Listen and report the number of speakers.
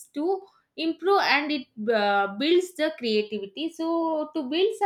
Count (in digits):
1